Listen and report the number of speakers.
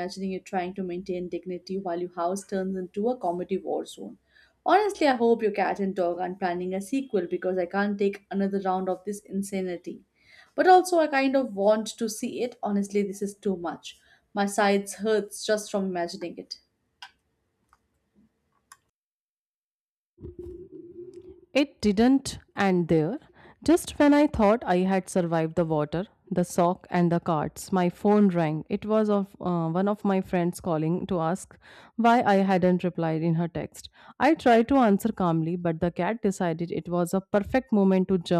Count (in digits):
2